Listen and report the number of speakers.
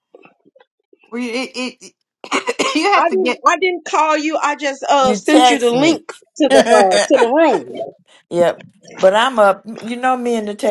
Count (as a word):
three